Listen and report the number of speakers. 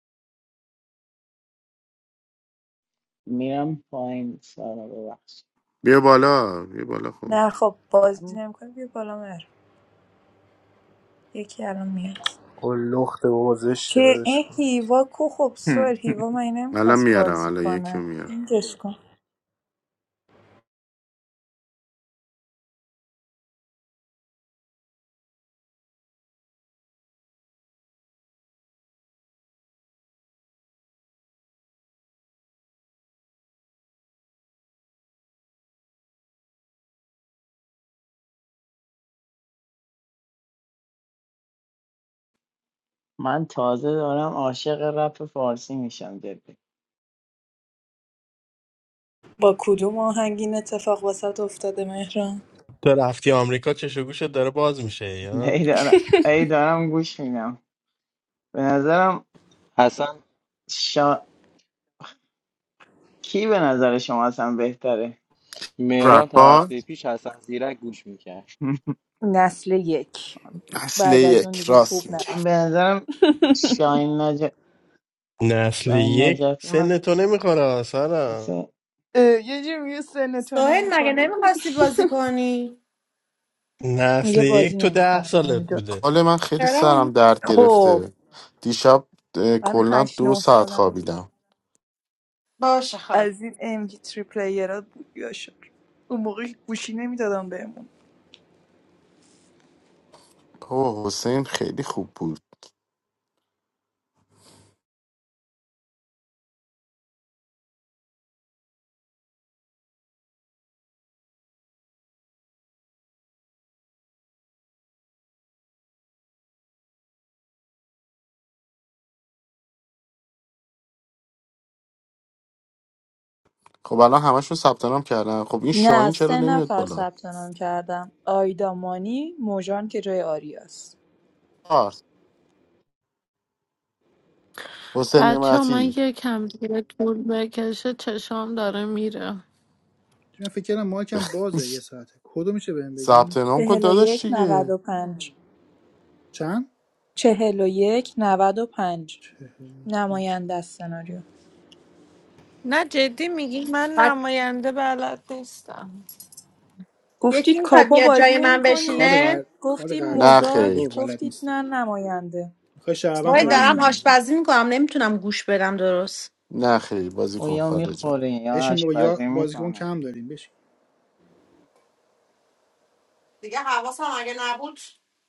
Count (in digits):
9